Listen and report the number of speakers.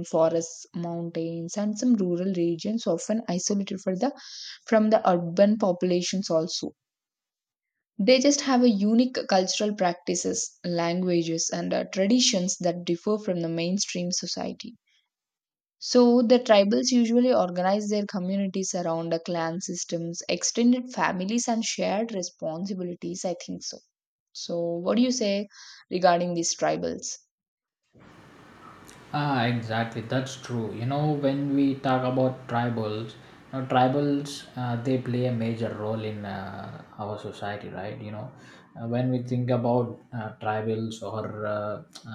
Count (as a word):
two